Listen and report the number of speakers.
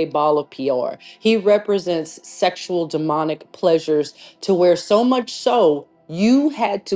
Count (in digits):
1